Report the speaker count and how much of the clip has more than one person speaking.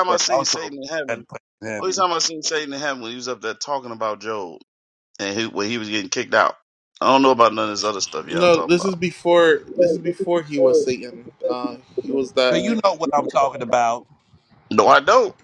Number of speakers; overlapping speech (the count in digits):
3, about 21%